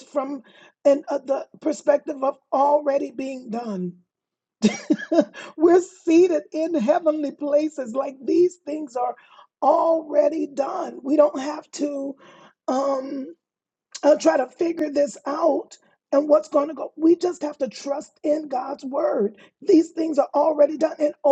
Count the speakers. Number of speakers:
1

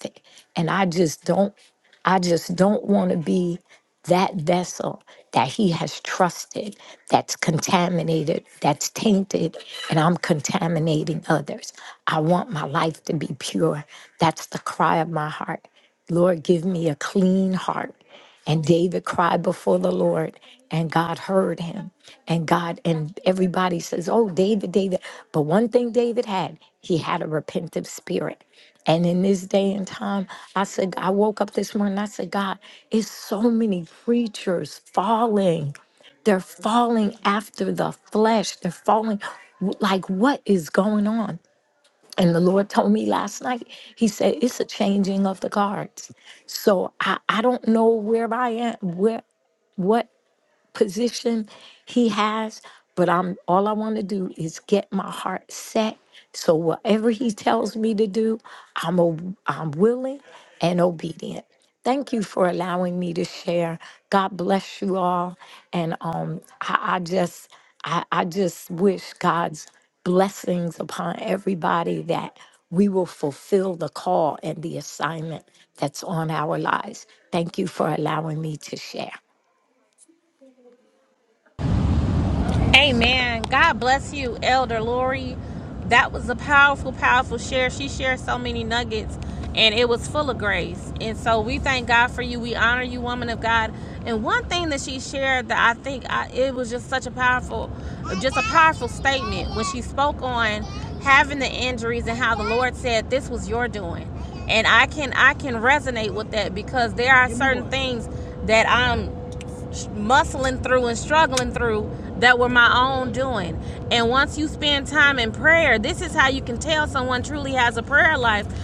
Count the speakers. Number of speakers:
2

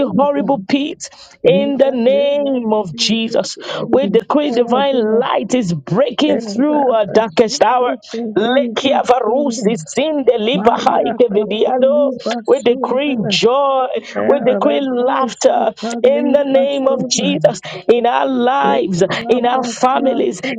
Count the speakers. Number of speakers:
2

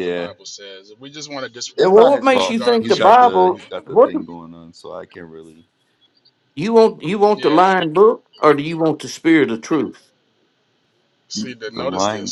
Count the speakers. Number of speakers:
3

